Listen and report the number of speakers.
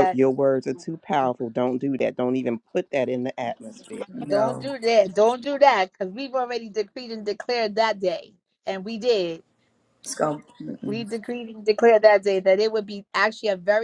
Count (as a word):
three